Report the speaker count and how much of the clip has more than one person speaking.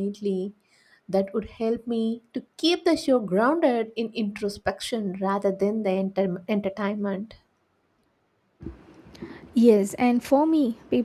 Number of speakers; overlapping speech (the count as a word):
two, no overlap